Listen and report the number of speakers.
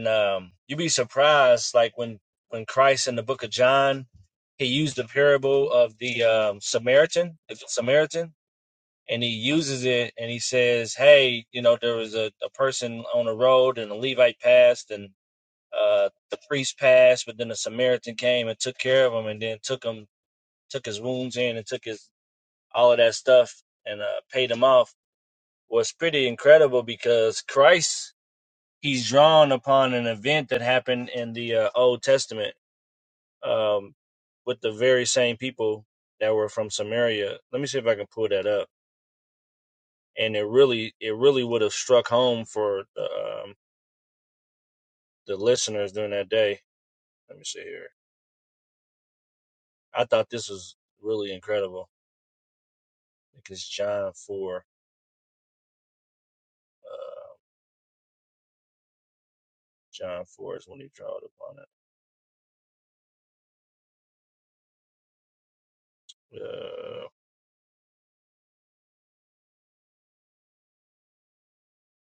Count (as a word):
one